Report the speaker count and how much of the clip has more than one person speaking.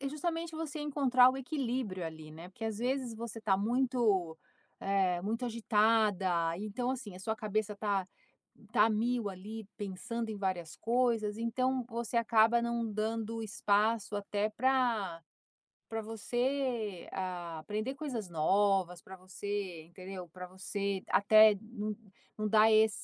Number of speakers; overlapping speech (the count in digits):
1, no overlap